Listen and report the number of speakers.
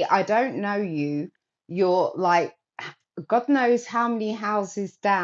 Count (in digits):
1